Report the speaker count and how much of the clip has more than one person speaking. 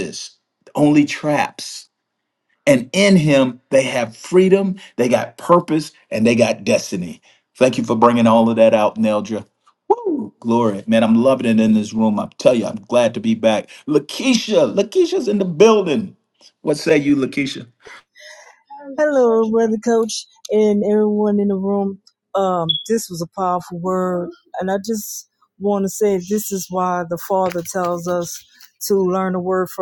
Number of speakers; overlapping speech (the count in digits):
2, no overlap